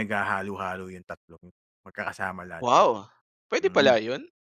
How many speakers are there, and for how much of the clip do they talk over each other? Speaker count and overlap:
2, about 12%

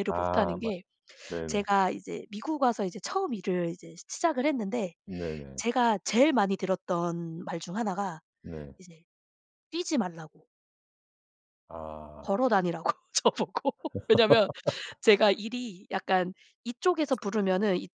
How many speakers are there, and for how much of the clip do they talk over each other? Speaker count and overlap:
2, about 4%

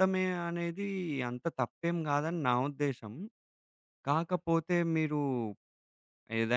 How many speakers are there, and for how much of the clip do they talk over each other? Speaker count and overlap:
1, no overlap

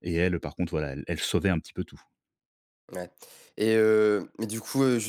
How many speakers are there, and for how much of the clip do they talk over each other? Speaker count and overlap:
2, no overlap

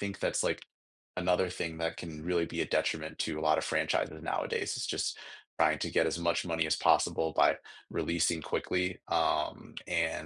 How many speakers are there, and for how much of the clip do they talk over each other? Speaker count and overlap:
1, no overlap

